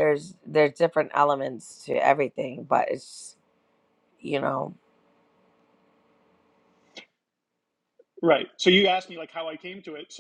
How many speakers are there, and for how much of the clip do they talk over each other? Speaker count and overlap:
2, no overlap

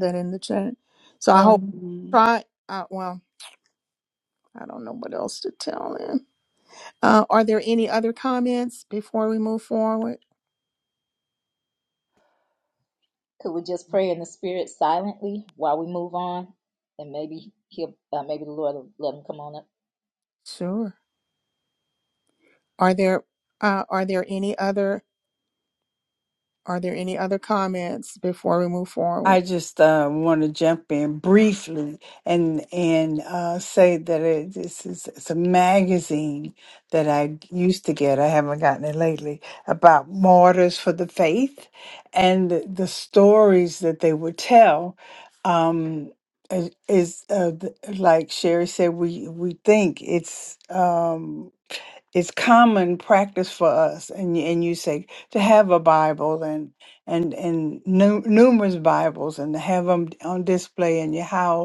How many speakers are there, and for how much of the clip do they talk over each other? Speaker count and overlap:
3, about 1%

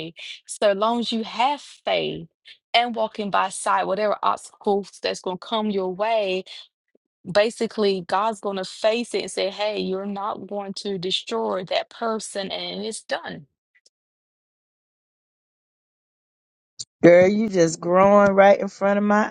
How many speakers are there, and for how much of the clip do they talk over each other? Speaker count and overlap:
2, no overlap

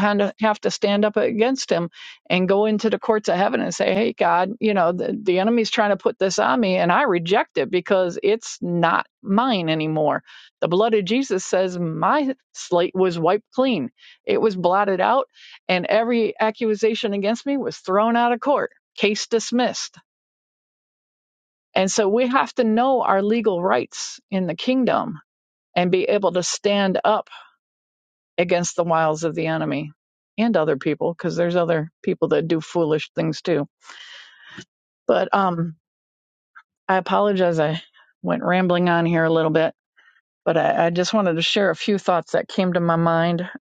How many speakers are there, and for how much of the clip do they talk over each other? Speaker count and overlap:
1, no overlap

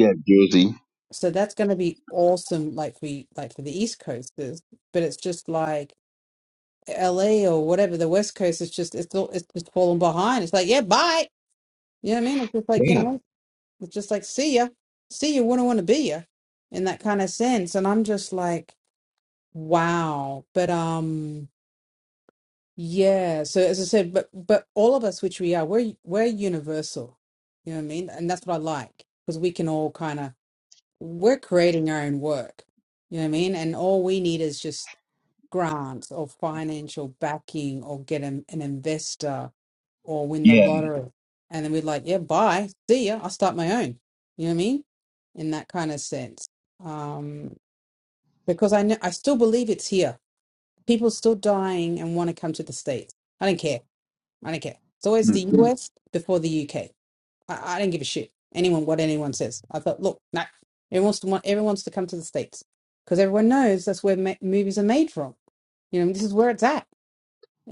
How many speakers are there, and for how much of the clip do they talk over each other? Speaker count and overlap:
2, about 1%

